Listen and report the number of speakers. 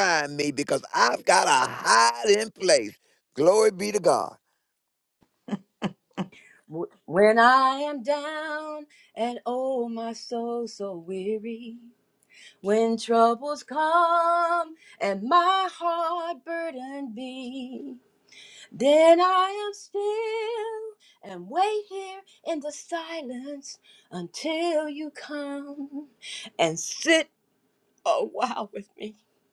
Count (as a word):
two